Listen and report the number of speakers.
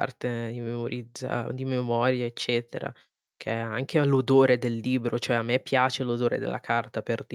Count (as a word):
one